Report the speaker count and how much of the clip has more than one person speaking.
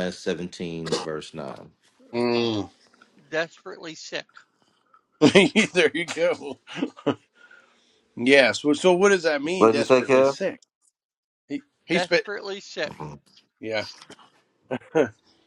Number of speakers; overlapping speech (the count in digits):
3, about 8%